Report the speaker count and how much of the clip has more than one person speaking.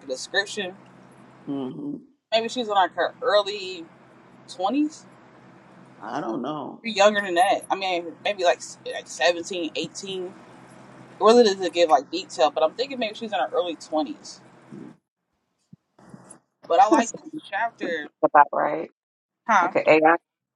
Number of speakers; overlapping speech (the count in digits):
3, about 2%